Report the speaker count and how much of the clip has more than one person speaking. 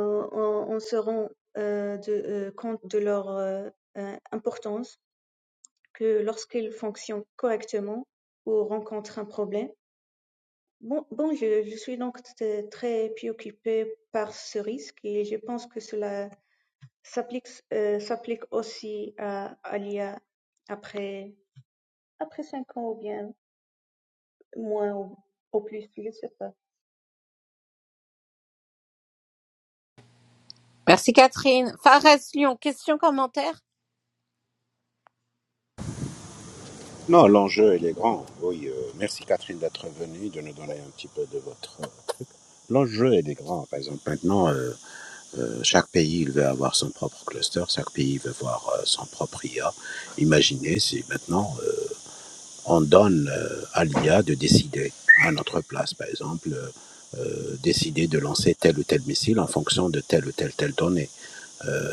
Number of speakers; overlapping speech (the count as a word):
three, no overlap